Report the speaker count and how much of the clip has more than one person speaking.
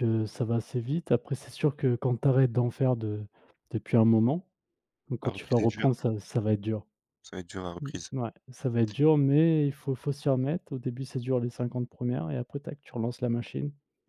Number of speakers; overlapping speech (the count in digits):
2, about 7%